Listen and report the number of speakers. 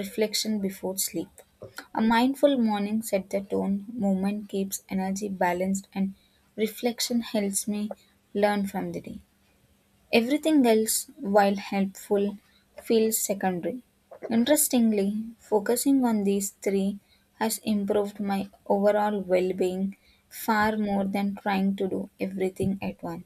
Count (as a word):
one